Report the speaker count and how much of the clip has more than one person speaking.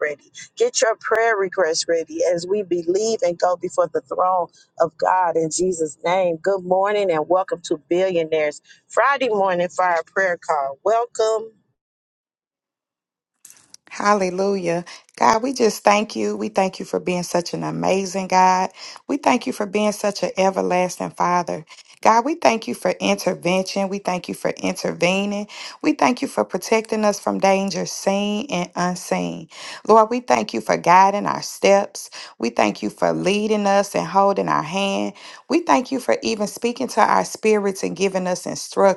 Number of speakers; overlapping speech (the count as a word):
two, no overlap